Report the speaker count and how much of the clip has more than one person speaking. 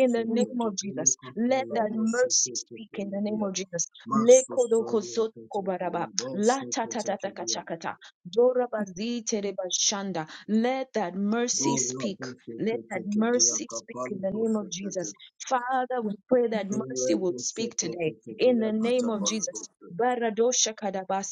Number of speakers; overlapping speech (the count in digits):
2, about 55%